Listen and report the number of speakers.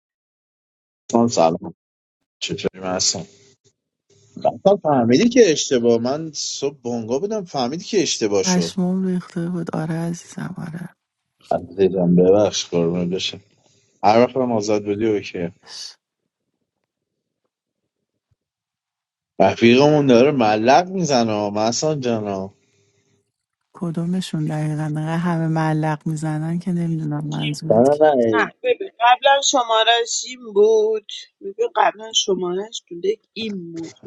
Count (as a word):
three